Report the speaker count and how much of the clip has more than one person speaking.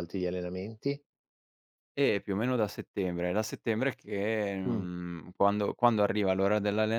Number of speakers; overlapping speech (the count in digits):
2, about 3%